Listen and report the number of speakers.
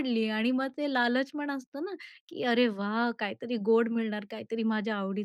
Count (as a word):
one